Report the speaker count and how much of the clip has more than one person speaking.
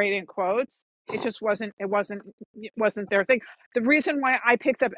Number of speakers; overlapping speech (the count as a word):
one, no overlap